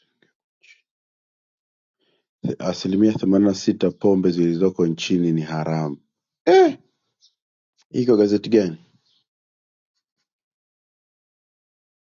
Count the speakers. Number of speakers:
1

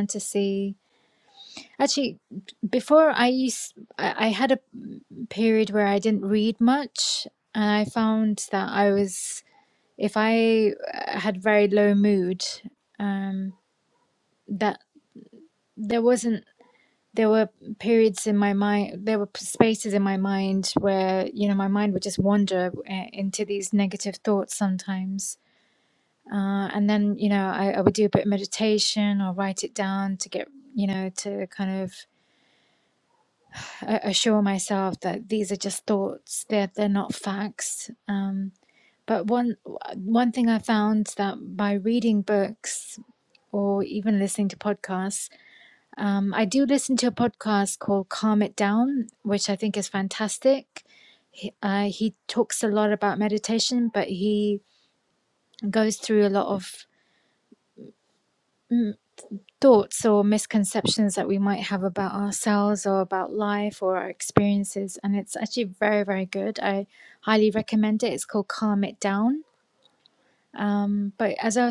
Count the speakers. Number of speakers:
1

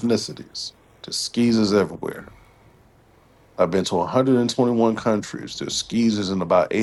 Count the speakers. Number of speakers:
1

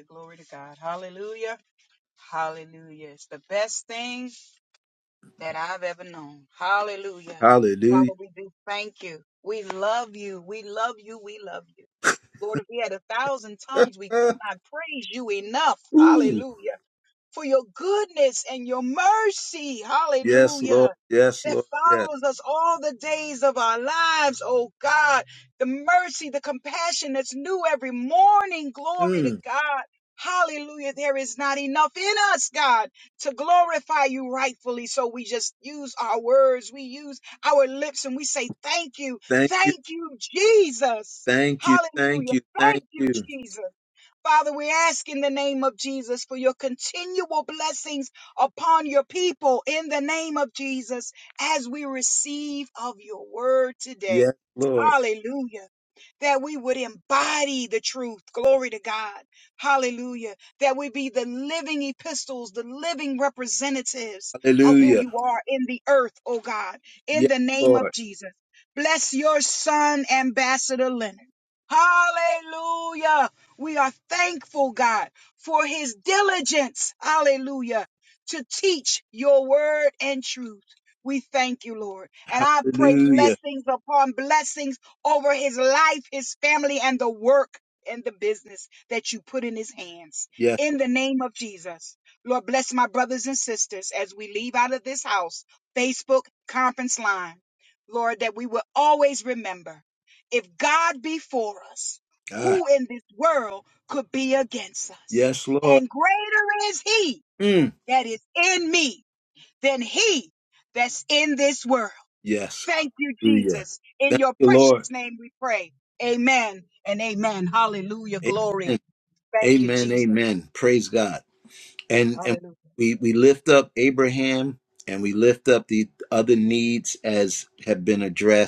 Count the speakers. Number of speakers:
2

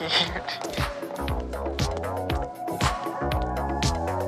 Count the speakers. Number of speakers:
0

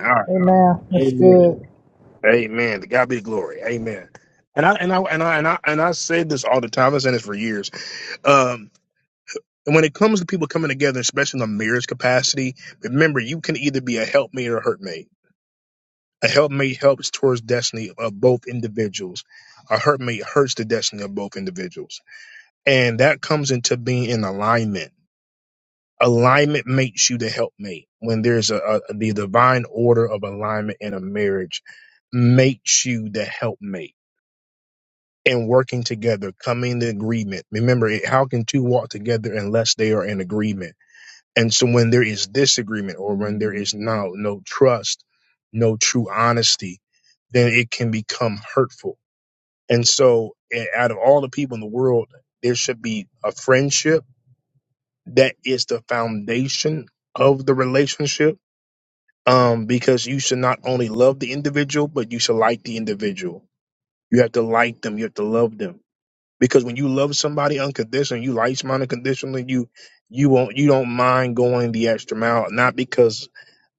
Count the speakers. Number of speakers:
2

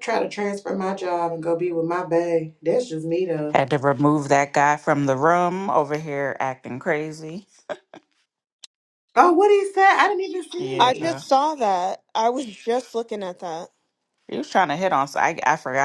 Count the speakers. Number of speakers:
3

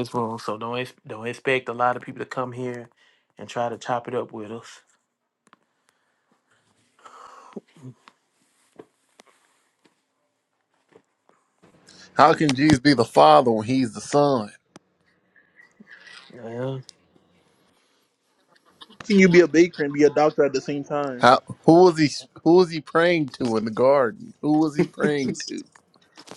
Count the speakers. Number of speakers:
3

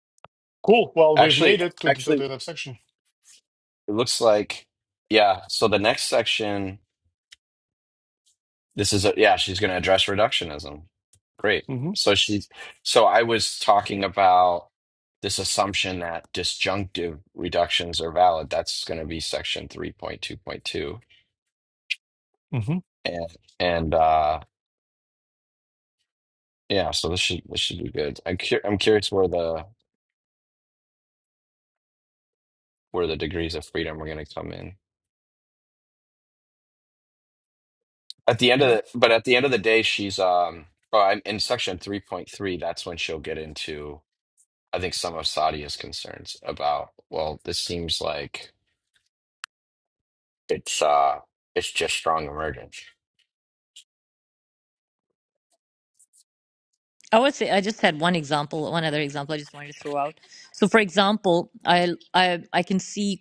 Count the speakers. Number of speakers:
3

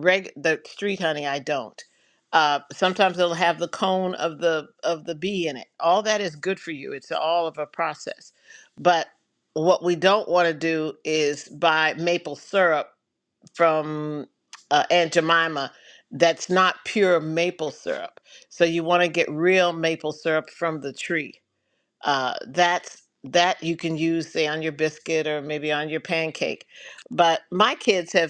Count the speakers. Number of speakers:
1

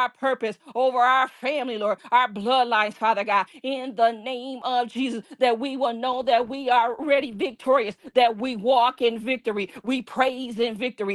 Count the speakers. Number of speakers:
1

